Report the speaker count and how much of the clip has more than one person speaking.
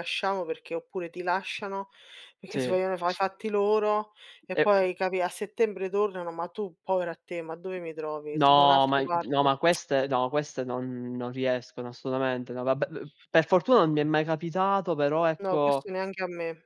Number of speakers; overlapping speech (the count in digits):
2, about 13%